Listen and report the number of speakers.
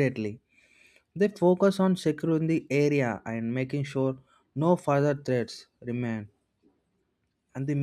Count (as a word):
one